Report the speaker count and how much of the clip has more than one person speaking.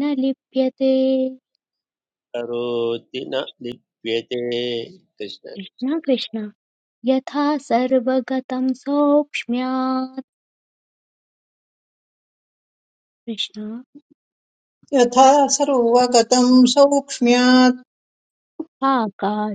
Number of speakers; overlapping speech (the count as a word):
three, under 1%